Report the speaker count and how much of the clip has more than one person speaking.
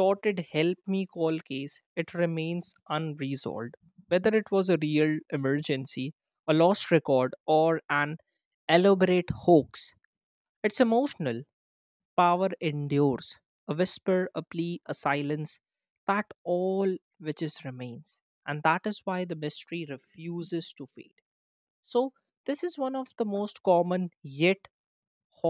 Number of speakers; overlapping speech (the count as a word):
one, no overlap